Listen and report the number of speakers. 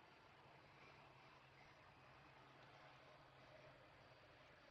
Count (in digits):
0